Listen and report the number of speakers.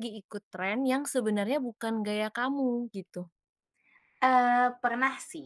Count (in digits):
2